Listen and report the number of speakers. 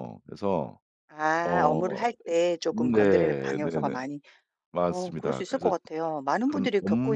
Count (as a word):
two